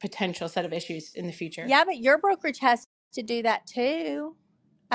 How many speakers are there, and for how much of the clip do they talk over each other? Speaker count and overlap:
2, about 1%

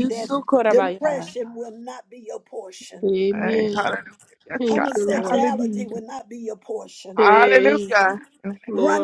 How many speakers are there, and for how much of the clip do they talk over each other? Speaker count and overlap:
3, about 48%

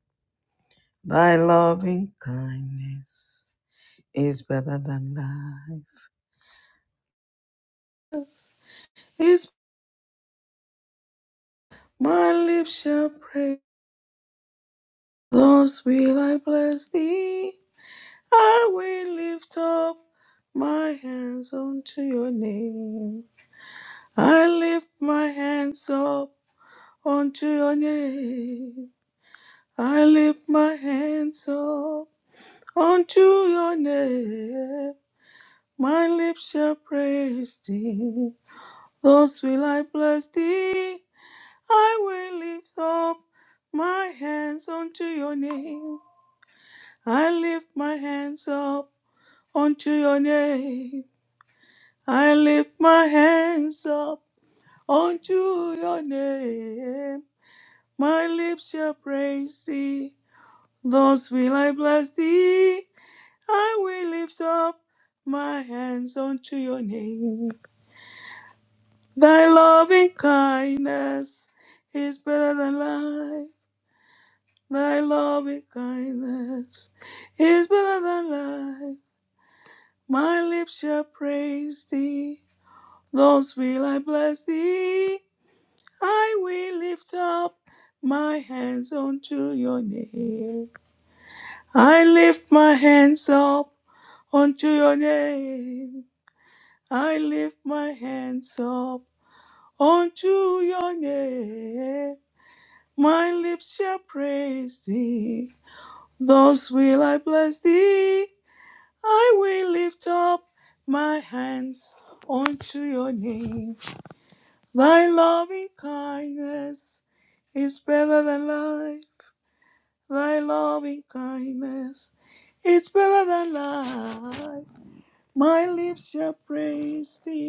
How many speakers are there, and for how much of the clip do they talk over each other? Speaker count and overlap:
1, no overlap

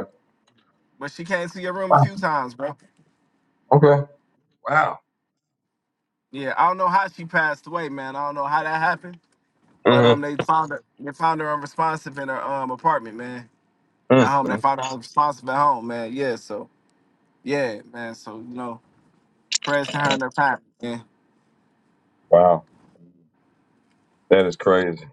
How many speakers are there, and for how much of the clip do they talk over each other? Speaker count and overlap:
2, about 4%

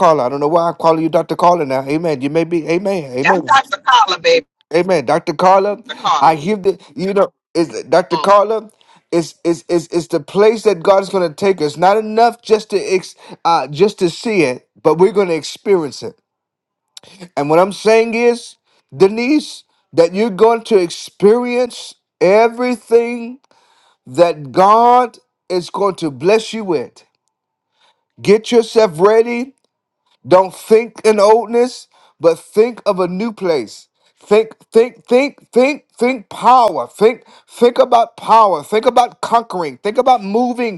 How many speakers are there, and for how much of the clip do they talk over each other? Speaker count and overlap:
2, about 2%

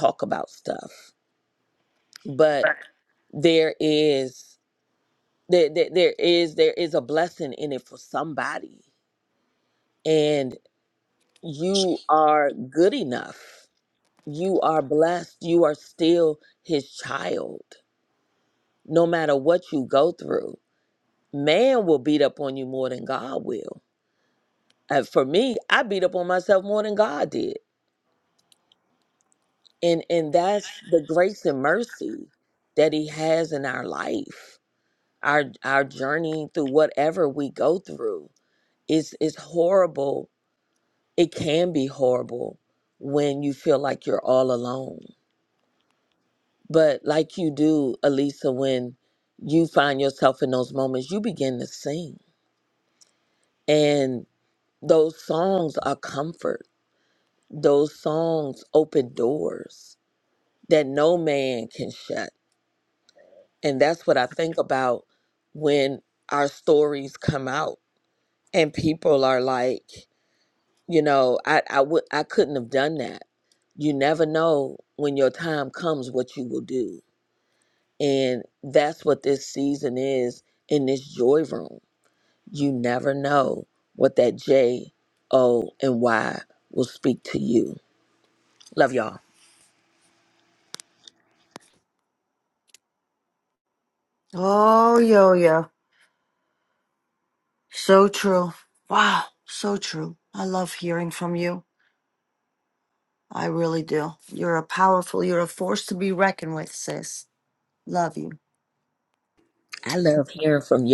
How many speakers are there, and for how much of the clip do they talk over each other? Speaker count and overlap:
2, no overlap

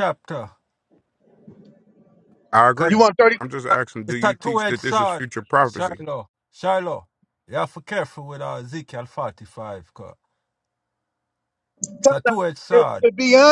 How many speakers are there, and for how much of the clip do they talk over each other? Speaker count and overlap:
3, about 13%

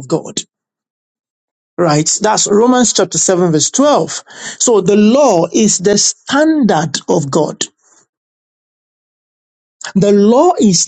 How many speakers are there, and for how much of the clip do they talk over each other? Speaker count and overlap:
1, no overlap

